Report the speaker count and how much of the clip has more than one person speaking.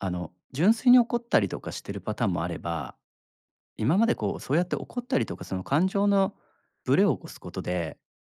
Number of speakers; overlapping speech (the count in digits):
1, no overlap